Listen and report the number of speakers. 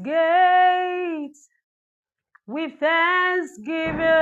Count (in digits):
1